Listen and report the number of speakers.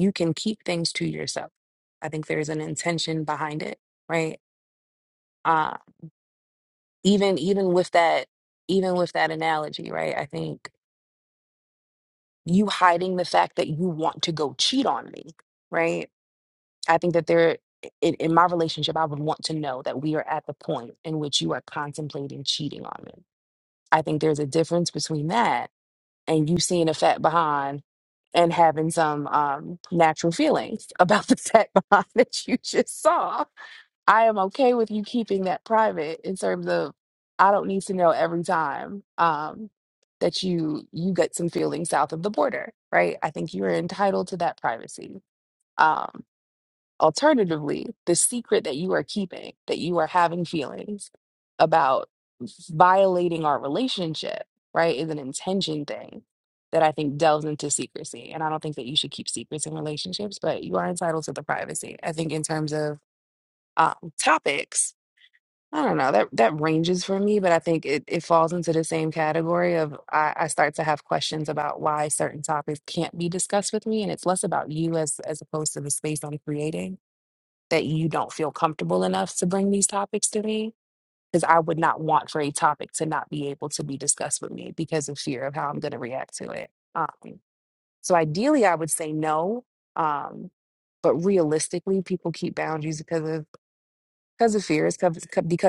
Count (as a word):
one